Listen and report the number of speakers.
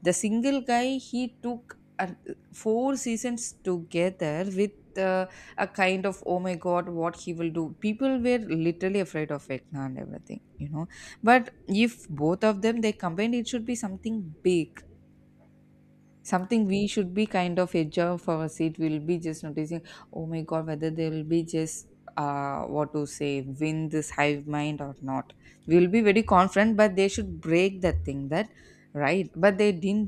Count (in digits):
1